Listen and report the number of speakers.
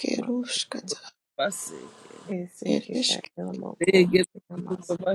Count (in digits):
3